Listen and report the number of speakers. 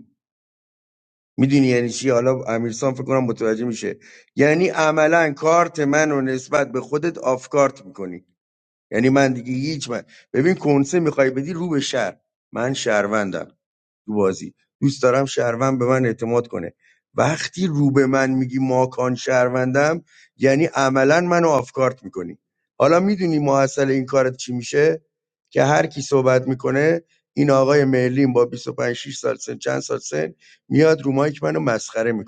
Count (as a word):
one